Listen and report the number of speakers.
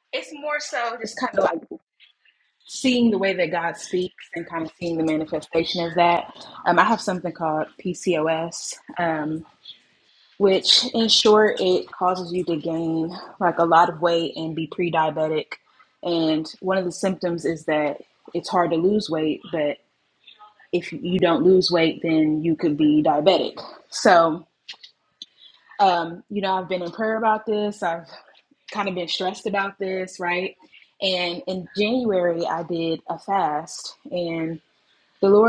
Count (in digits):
1